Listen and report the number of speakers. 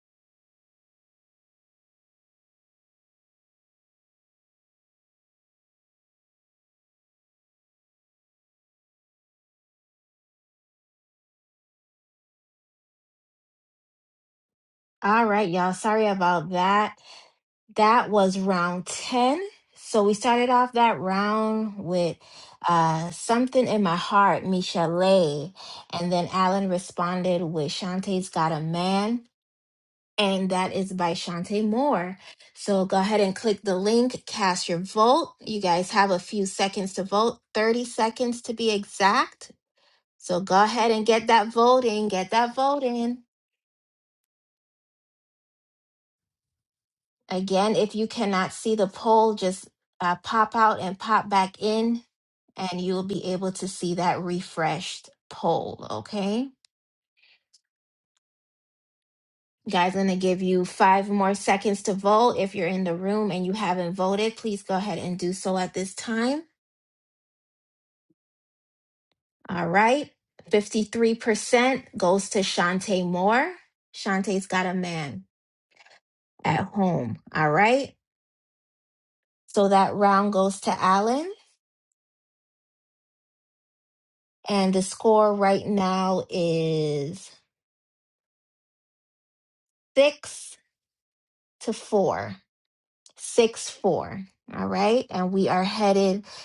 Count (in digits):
1